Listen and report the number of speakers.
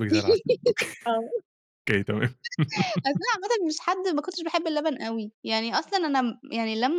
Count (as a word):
two